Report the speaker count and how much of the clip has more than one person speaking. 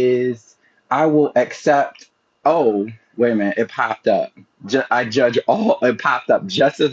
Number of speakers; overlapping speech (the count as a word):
one, no overlap